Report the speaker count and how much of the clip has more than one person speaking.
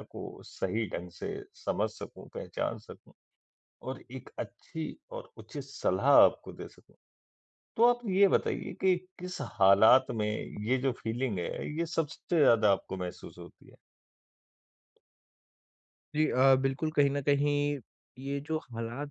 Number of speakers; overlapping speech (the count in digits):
2, no overlap